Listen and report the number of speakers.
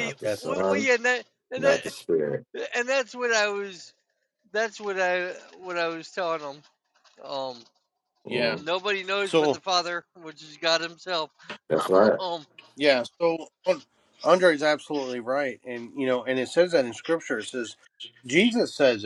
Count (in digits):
3